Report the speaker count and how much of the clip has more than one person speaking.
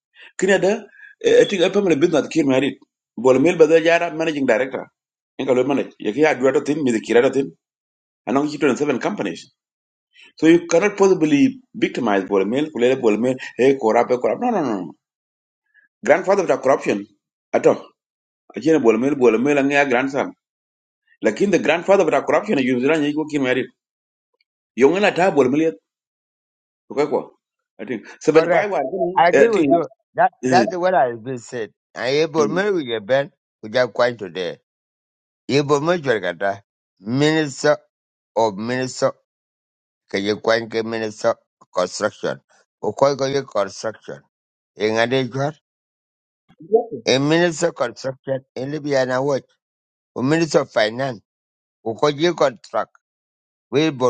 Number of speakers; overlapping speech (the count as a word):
two, about 2%